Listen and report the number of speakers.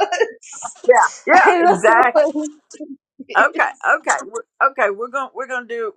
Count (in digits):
2